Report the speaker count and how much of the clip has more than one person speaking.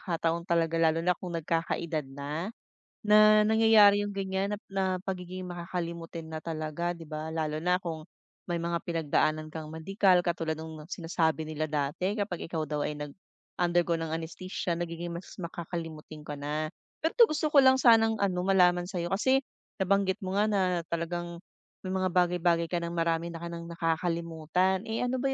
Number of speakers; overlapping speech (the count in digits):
1, no overlap